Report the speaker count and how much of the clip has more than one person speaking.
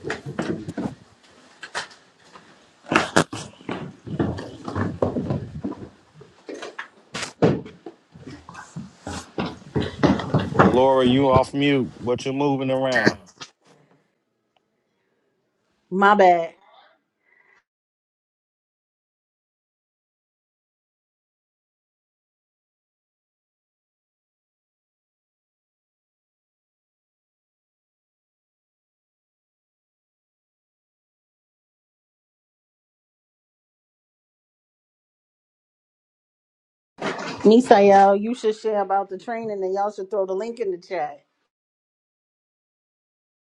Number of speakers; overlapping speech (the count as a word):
two, no overlap